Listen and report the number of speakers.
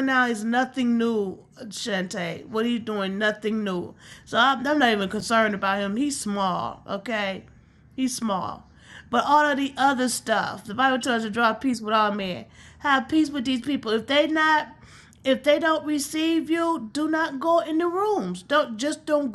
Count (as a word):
one